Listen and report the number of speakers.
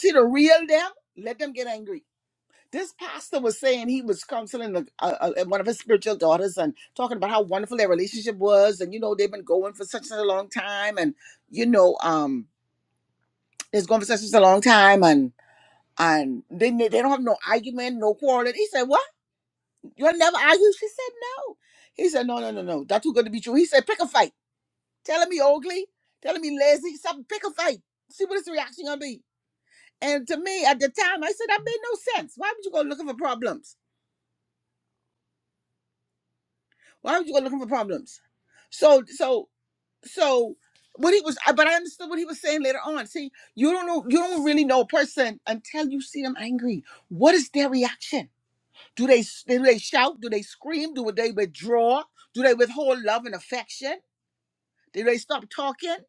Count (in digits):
1